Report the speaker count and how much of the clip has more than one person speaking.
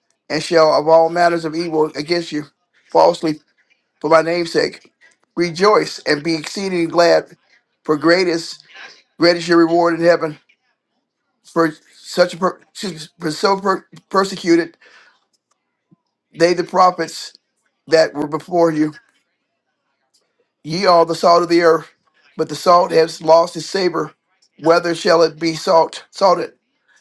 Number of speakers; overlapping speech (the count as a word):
one, no overlap